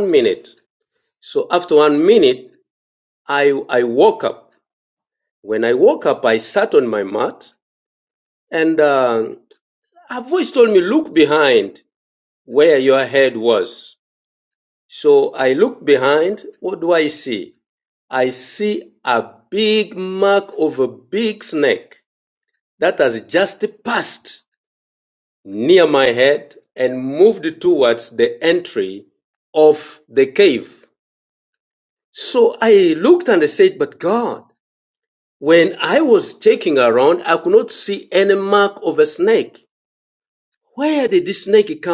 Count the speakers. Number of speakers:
1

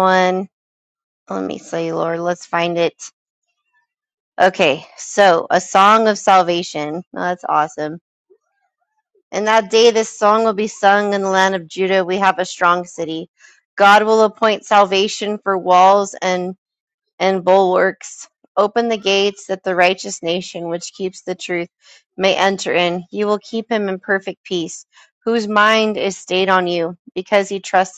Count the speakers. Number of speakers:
1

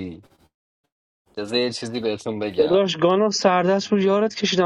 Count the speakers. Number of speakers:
2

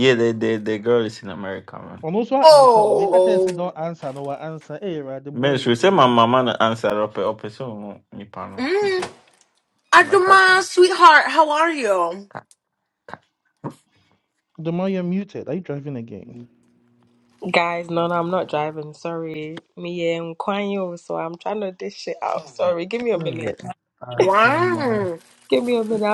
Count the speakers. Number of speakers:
4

